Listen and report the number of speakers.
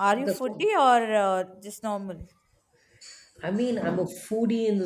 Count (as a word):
two